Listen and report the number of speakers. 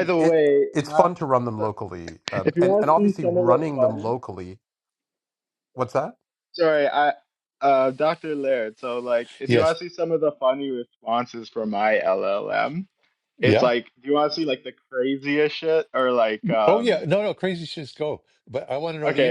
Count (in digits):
3